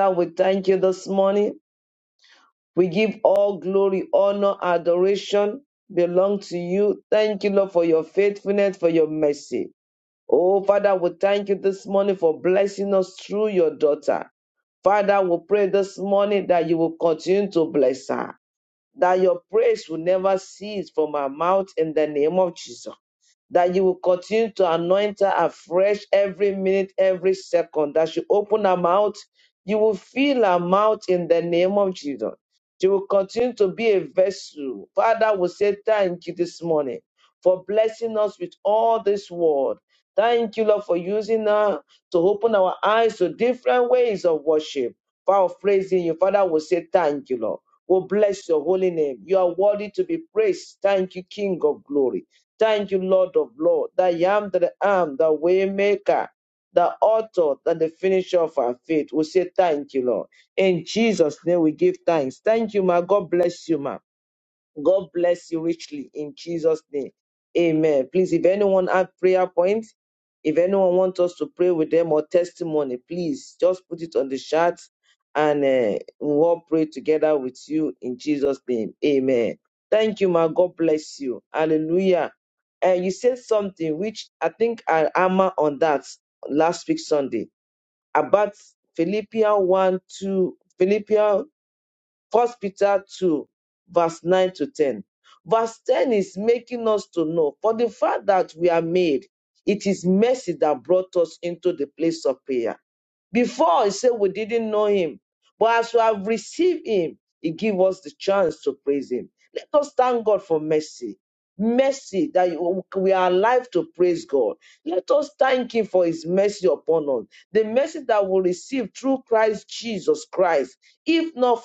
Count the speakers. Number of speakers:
one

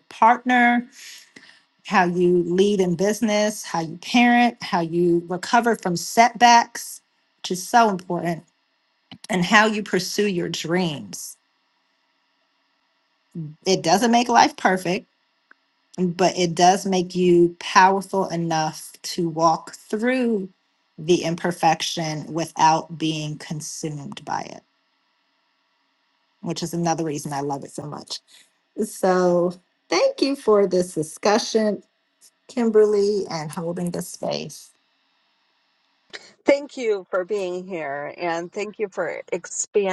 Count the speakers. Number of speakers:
two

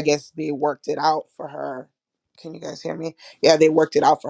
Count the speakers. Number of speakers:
one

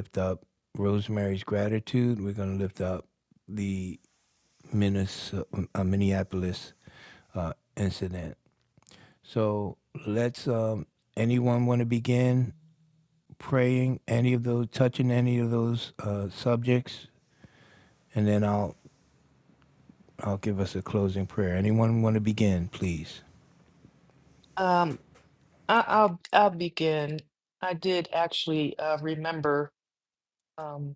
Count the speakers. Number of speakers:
two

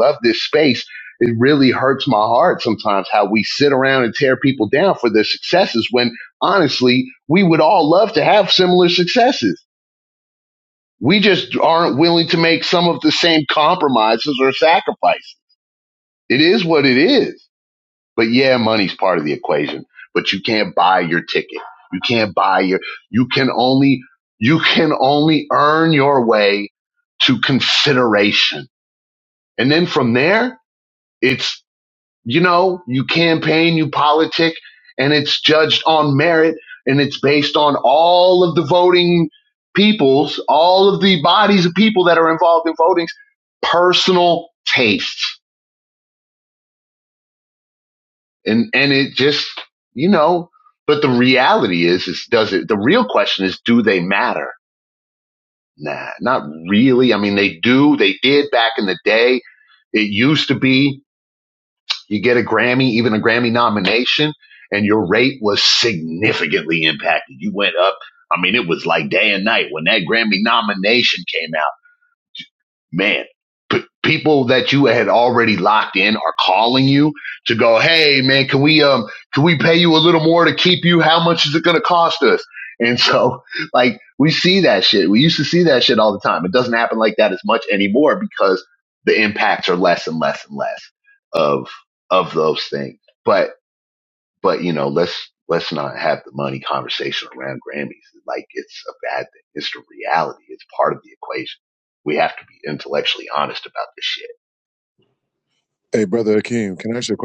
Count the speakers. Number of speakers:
two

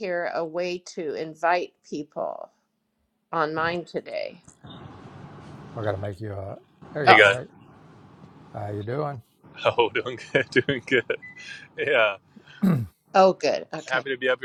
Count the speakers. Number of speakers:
three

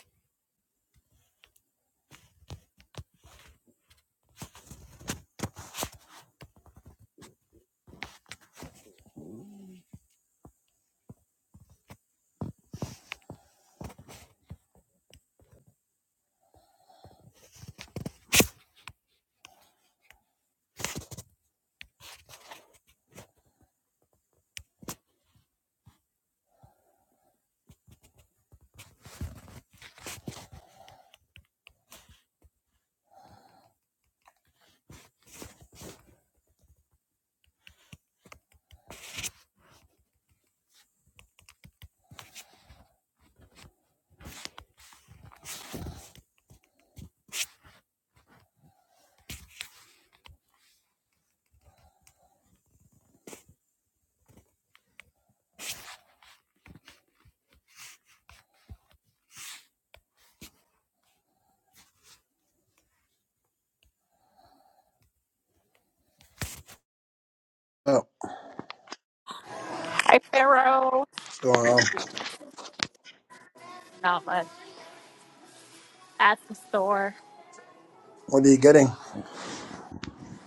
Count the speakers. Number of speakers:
two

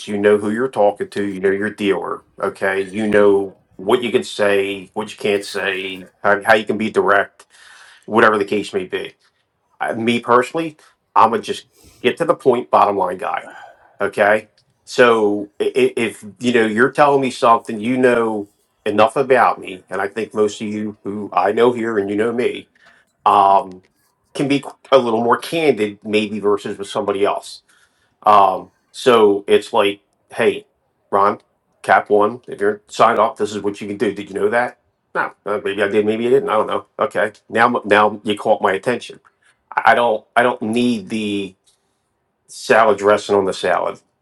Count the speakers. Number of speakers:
one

